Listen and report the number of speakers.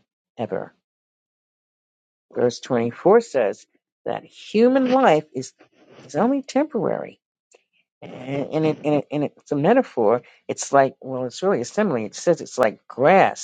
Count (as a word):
one